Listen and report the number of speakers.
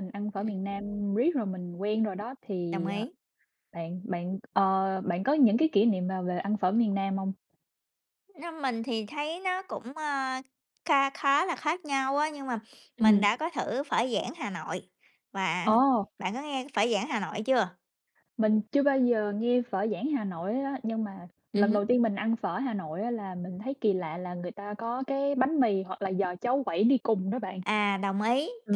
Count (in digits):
2